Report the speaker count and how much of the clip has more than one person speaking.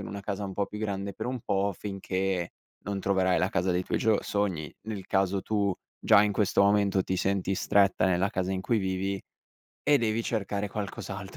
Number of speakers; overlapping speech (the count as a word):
one, no overlap